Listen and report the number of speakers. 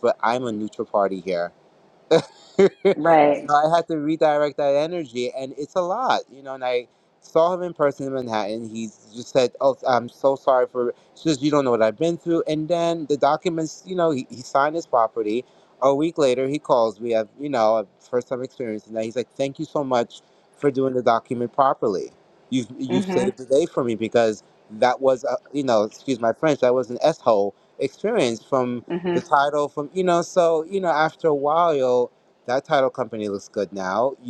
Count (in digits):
2